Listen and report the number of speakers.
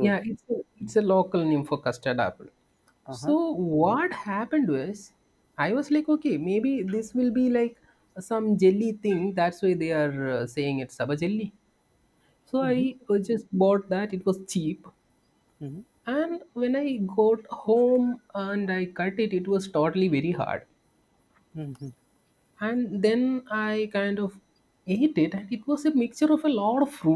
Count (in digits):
2